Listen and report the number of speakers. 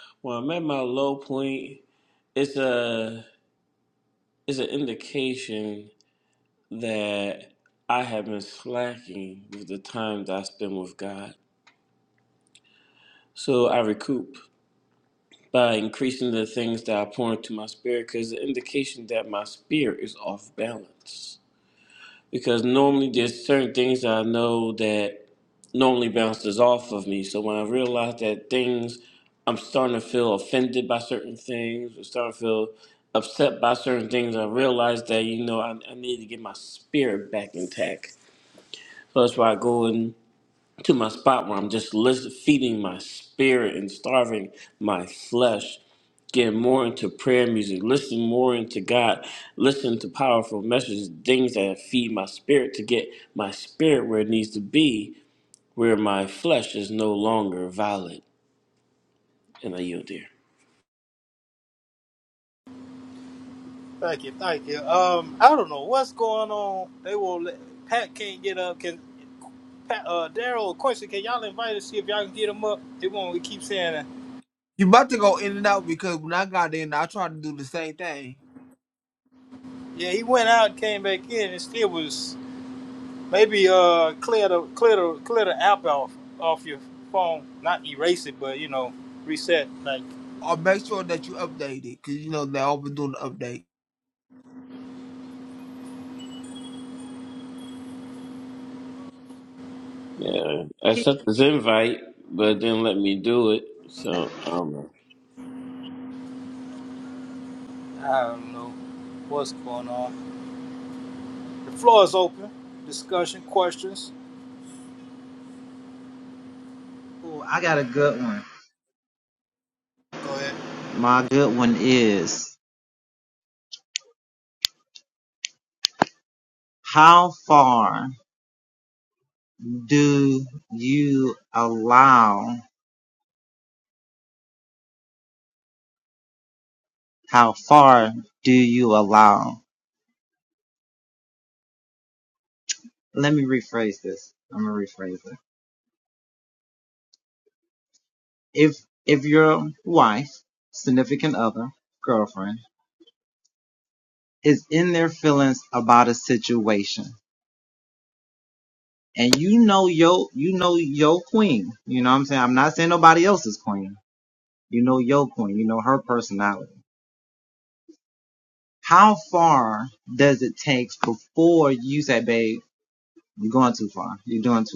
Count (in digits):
4